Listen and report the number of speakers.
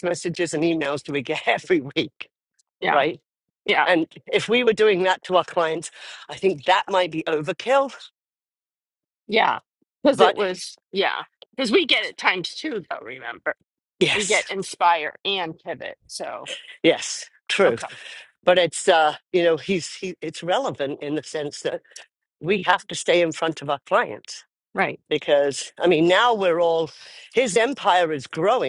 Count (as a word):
two